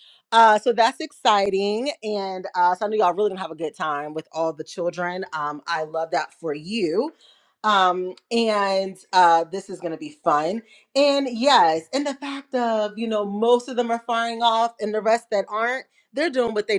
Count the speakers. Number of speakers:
1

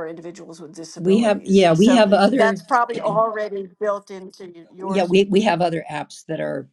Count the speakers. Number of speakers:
2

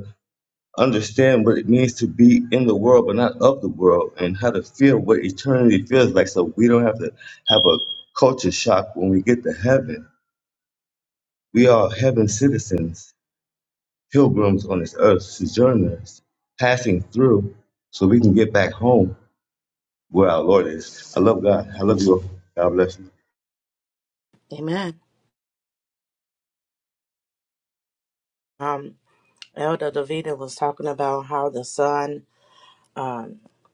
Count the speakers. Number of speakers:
2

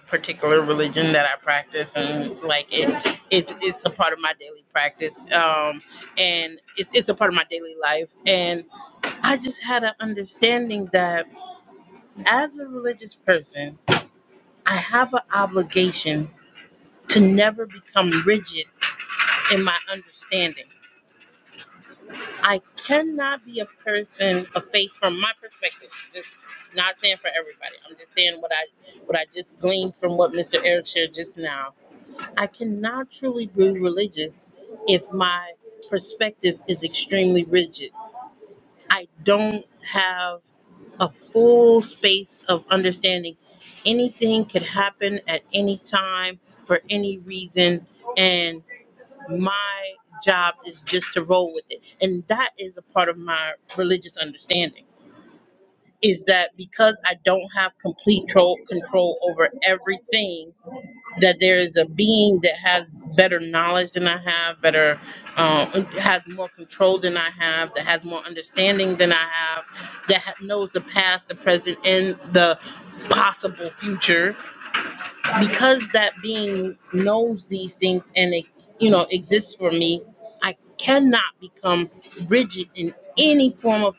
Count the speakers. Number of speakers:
1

